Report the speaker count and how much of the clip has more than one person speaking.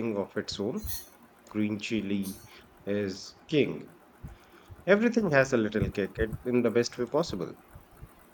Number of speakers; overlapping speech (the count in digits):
1, no overlap